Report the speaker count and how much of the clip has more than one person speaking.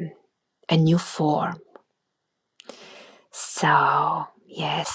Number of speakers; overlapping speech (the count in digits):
1, no overlap